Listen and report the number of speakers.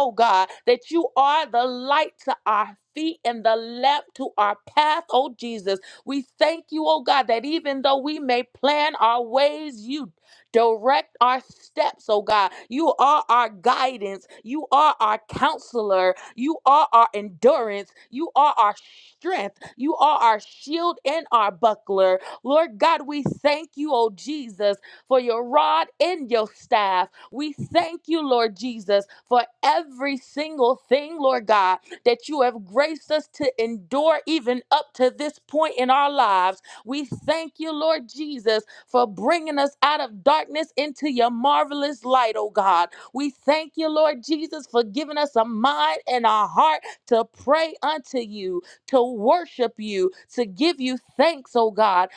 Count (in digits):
1